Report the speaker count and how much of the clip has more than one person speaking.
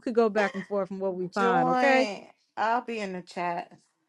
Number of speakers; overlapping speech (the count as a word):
two, about 16%